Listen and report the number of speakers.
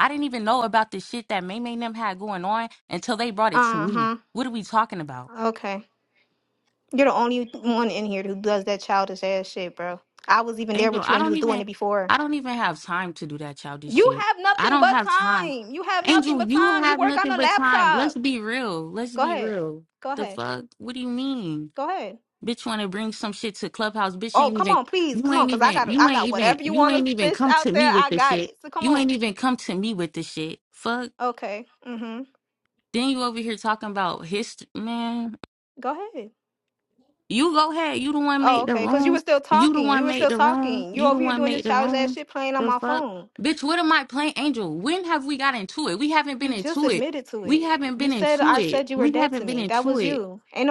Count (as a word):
two